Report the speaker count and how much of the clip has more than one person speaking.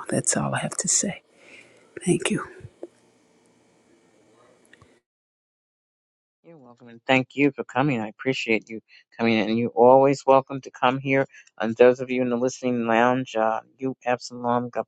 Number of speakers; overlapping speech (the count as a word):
two, no overlap